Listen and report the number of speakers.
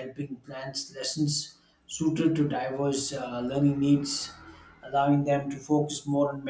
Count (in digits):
1